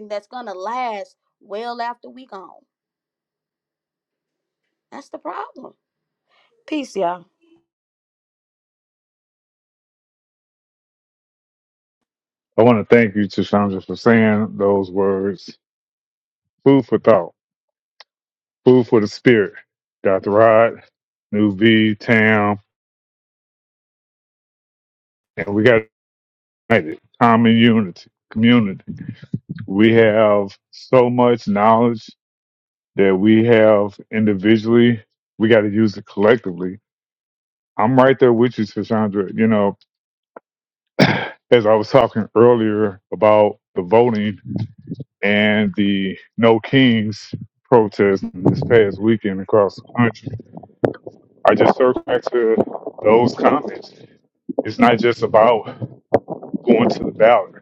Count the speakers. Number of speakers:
2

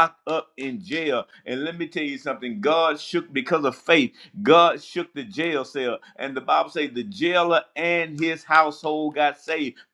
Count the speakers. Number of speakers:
1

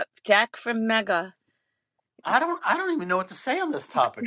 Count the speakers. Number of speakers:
2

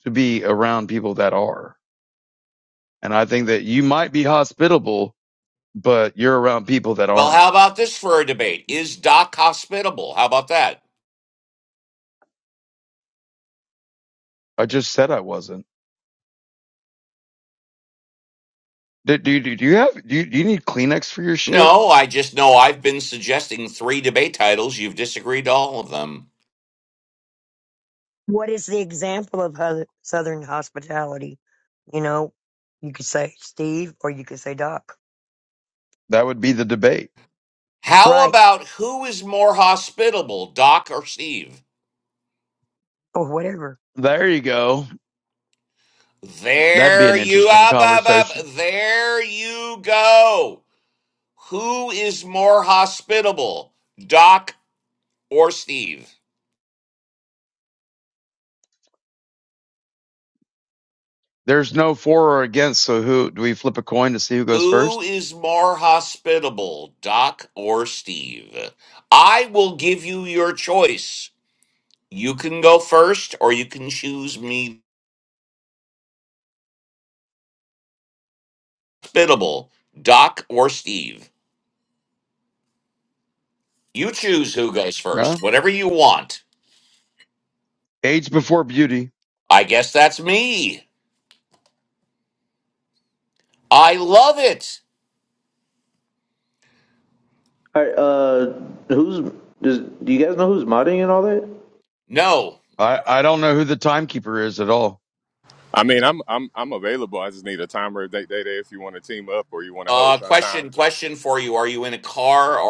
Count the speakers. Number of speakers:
5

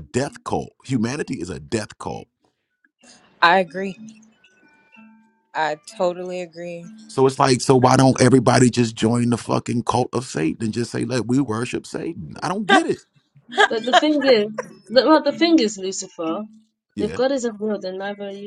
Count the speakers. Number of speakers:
3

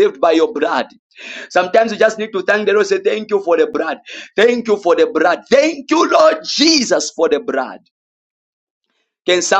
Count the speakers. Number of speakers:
1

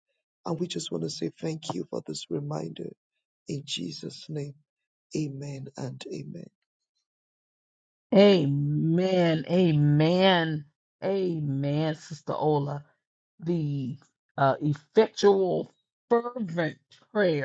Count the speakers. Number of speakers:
2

